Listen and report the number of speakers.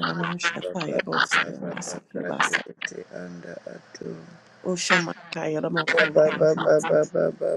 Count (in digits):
2